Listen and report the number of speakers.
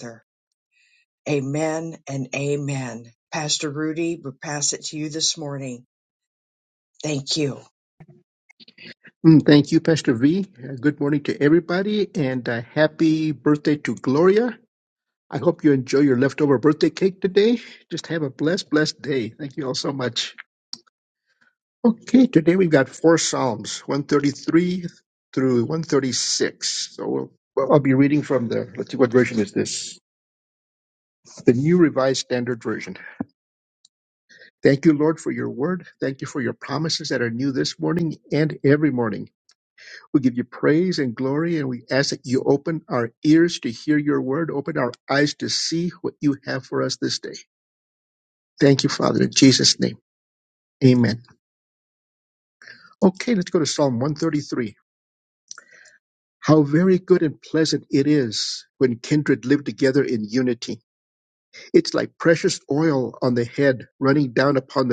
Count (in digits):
2